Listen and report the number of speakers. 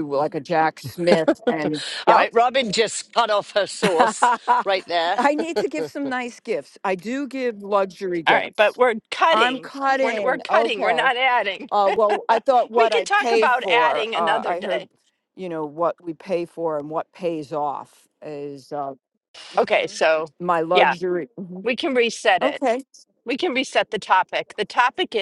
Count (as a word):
three